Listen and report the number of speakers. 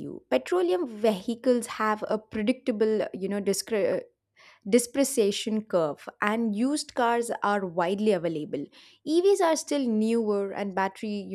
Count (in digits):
1